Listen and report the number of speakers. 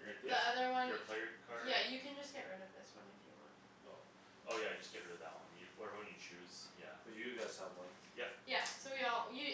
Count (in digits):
3